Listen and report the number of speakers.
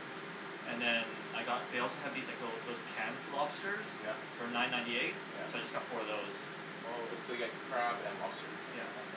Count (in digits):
2